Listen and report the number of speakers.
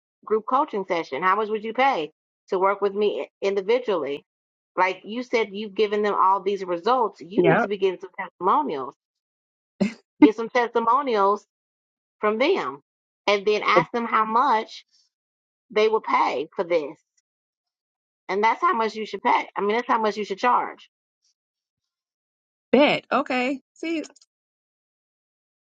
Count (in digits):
2